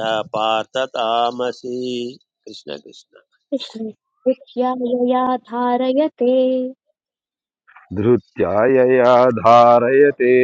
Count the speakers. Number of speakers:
3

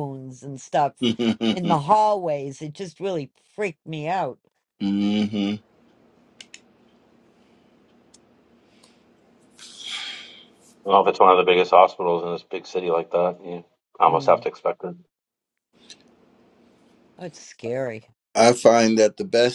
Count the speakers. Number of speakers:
3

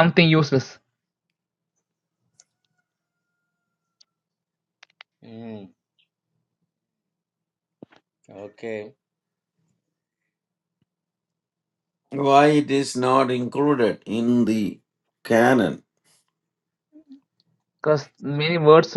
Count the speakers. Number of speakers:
3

